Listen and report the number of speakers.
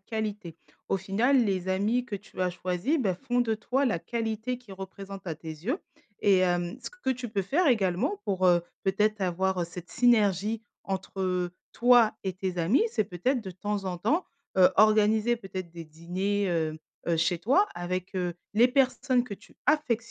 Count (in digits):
1